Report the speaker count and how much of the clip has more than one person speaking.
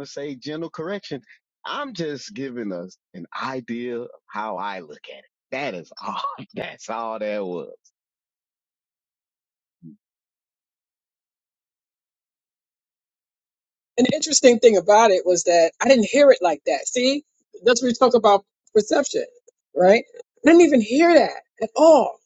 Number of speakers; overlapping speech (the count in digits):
2, no overlap